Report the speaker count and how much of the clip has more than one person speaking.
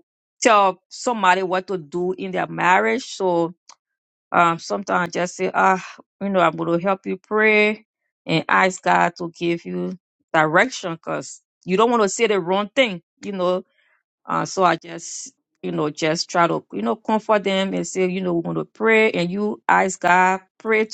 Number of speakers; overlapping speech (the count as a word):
one, no overlap